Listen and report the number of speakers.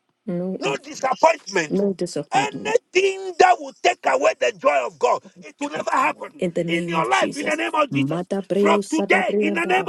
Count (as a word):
two